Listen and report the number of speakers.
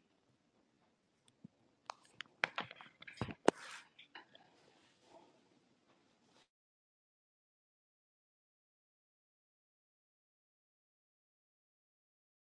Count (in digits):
0